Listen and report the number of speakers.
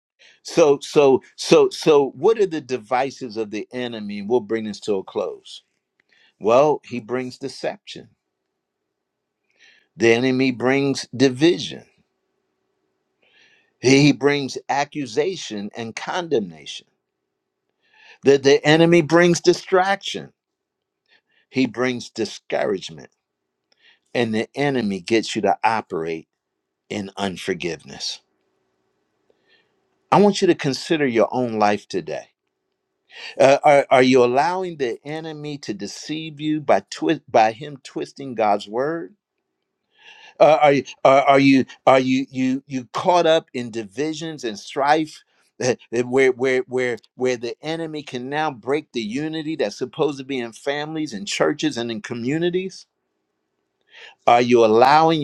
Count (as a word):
one